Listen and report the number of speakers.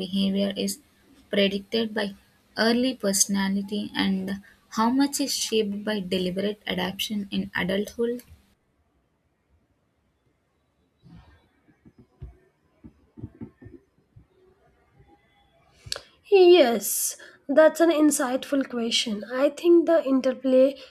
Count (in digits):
2